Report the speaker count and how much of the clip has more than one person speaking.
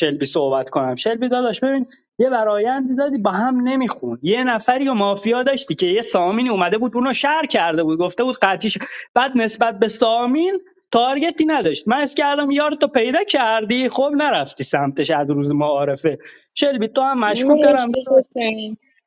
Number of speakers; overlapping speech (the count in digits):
2, about 5%